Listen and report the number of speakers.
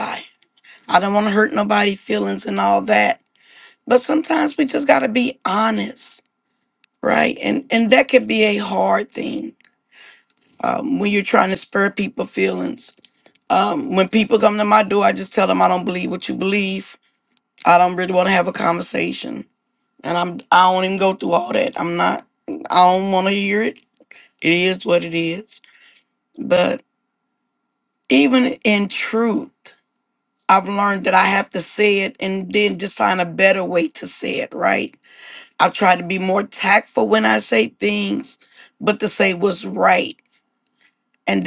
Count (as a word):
one